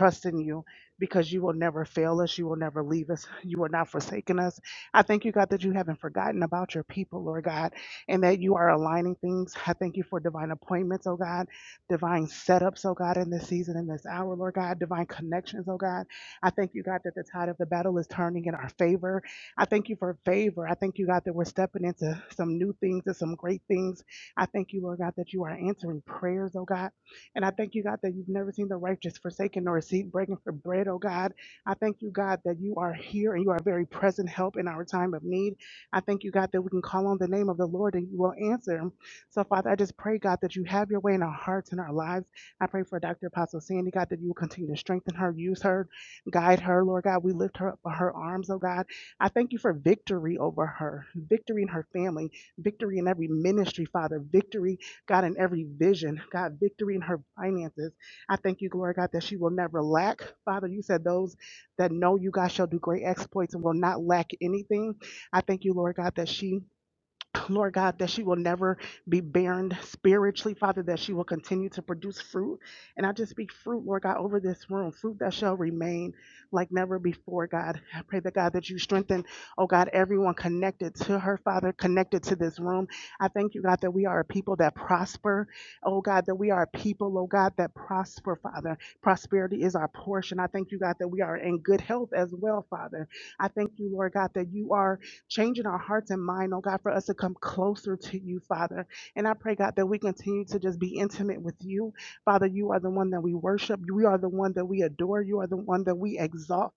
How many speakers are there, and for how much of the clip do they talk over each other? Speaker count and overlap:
1, no overlap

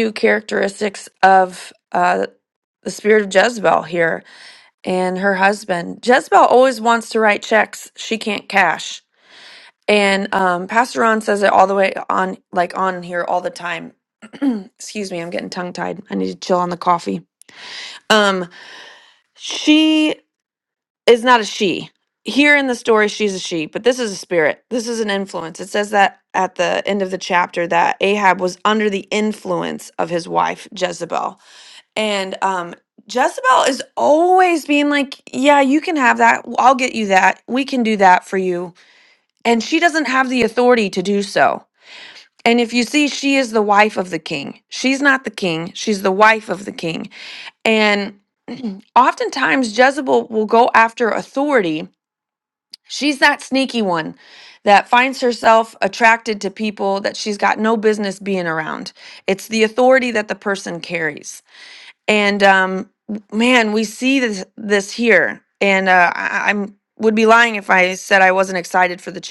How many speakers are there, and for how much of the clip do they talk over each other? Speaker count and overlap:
1, no overlap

